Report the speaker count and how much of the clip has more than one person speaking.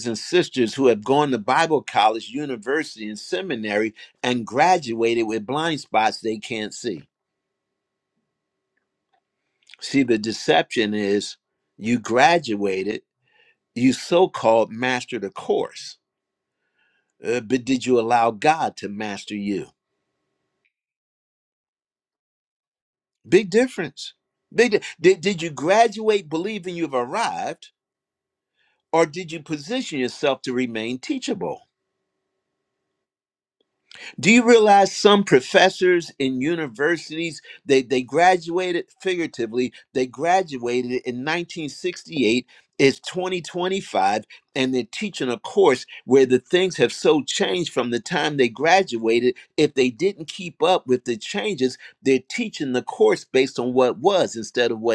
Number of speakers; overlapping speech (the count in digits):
1, no overlap